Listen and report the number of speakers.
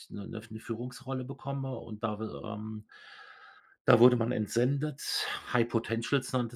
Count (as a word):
one